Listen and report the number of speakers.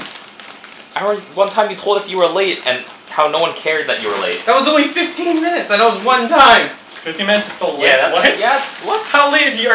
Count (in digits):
3